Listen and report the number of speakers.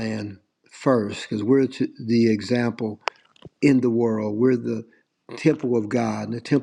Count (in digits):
1